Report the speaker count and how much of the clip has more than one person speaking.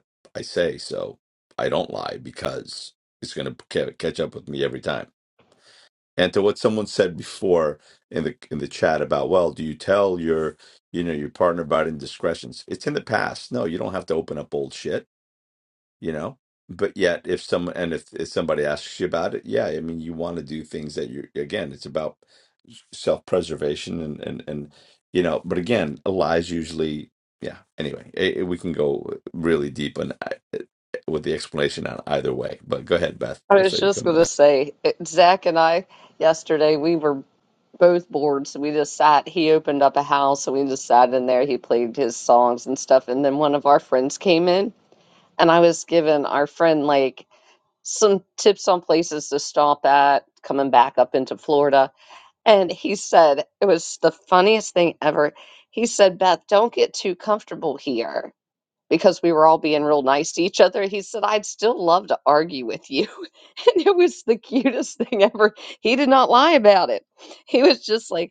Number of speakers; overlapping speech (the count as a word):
two, about 1%